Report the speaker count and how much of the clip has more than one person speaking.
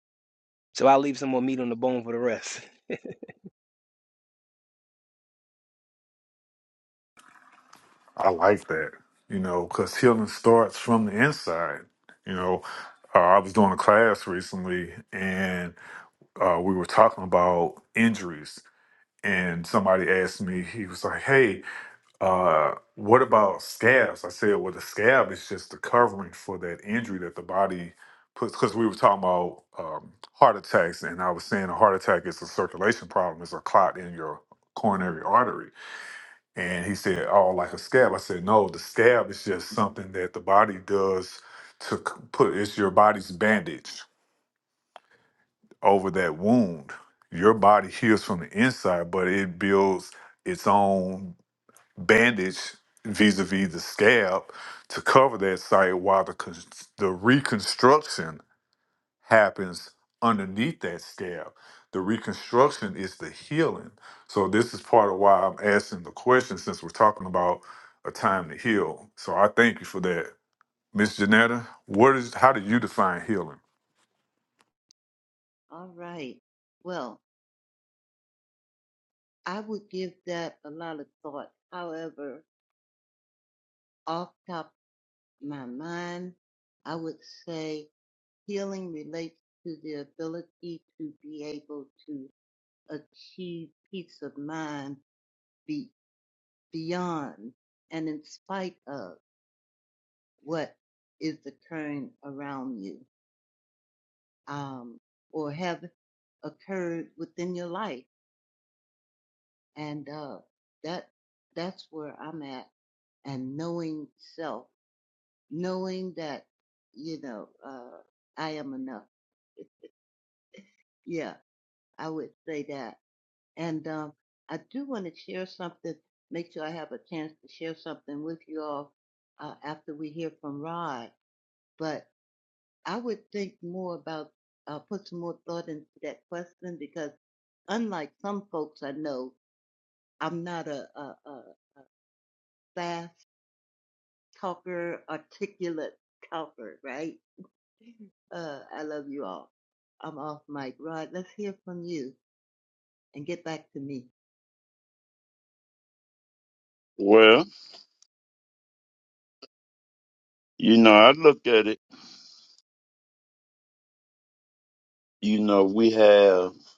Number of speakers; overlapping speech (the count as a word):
four, no overlap